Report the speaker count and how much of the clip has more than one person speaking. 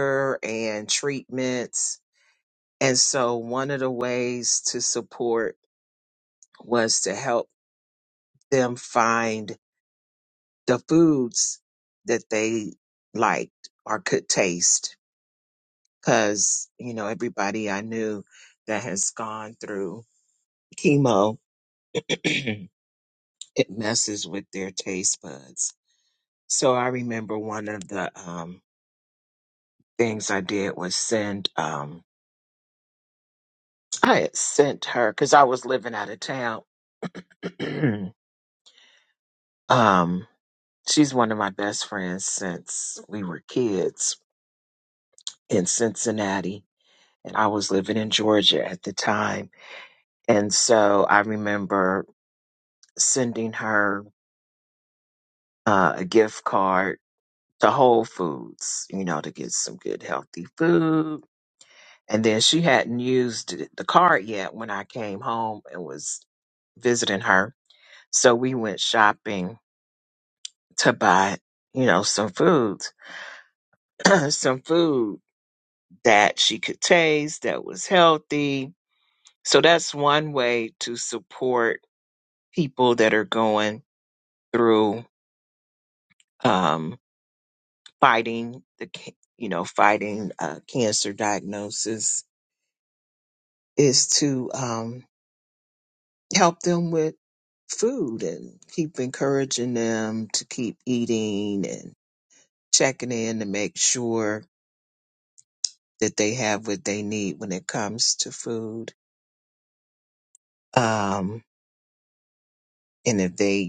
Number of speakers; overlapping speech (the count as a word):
one, no overlap